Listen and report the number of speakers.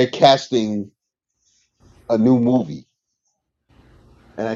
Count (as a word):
one